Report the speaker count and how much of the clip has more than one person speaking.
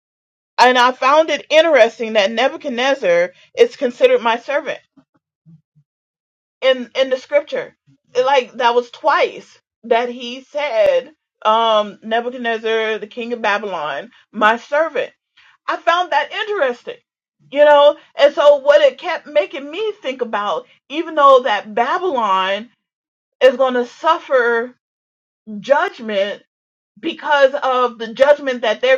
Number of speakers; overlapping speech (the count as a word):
one, no overlap